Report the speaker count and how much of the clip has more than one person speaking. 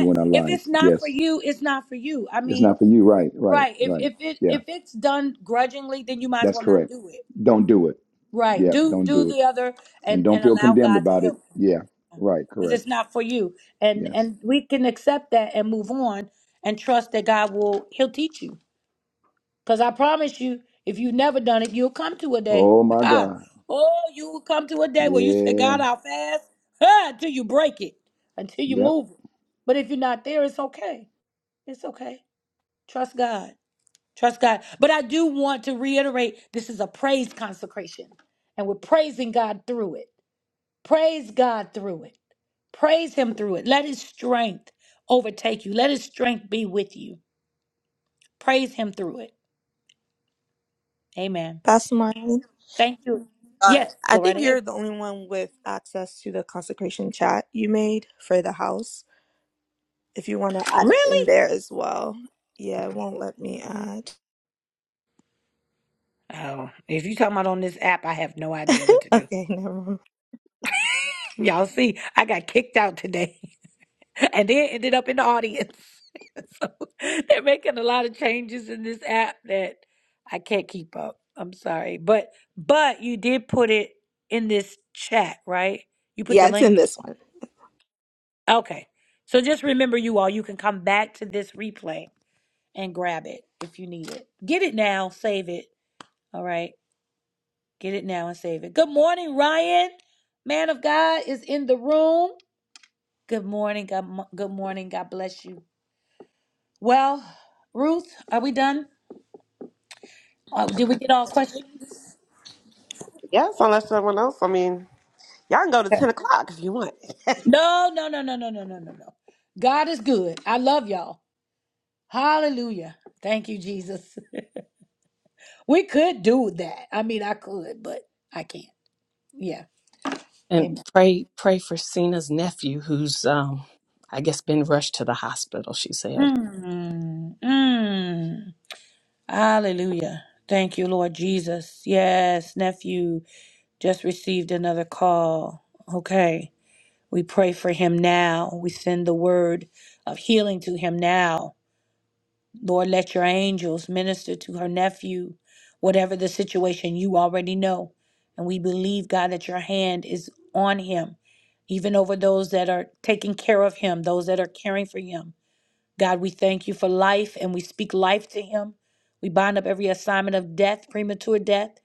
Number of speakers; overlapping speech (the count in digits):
5, about 5%